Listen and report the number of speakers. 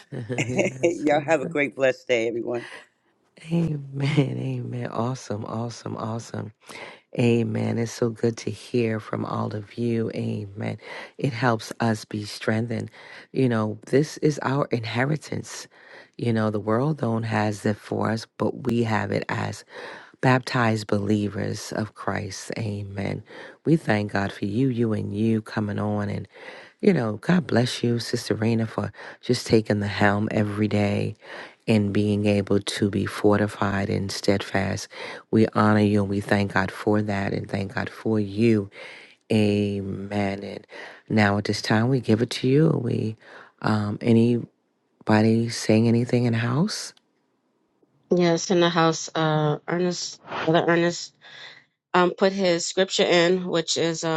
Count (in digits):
3